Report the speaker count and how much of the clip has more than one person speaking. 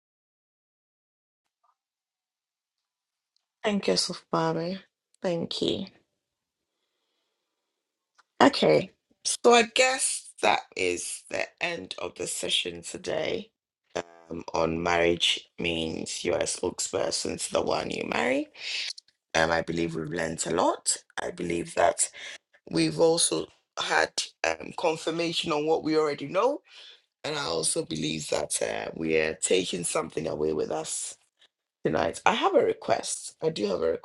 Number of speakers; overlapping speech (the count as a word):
one, no overlap